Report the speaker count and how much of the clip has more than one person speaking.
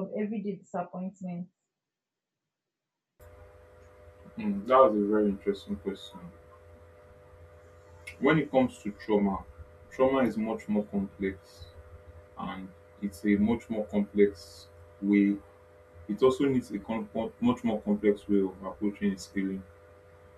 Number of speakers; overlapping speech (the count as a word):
two, no overlap